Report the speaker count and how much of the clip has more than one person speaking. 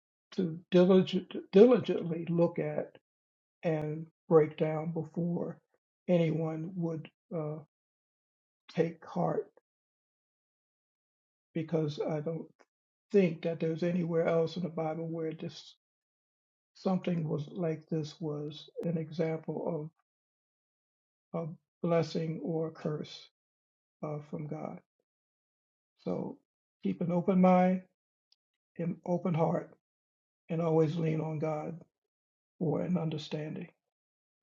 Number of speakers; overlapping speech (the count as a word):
one, no overlap